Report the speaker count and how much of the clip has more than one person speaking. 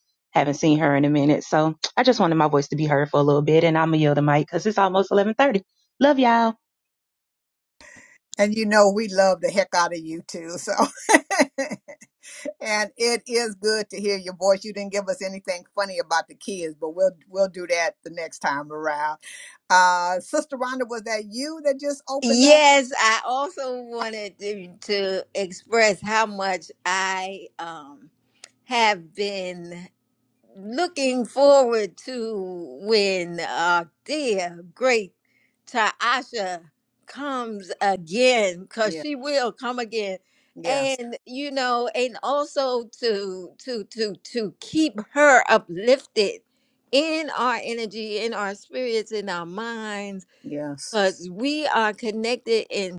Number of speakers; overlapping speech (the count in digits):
3, about 2%